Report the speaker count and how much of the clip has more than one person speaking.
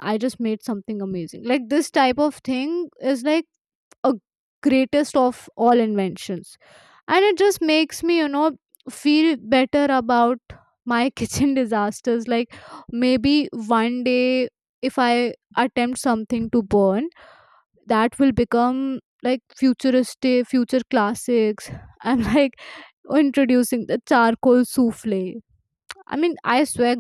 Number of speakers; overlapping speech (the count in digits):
1, no overlap